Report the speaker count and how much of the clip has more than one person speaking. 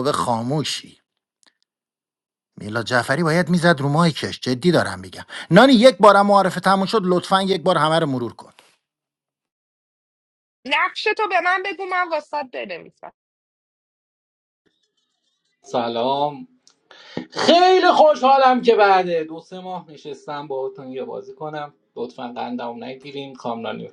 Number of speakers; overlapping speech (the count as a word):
three, no overlap